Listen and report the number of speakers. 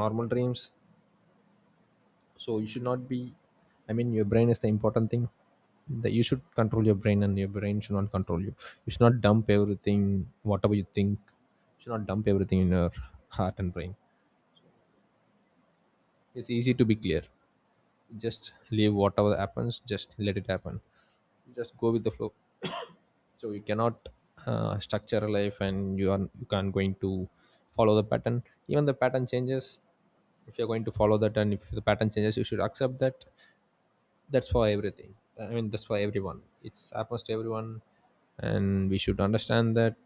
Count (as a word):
one